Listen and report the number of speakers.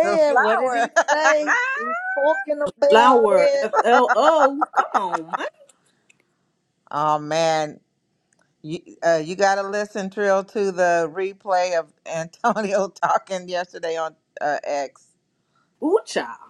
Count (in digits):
3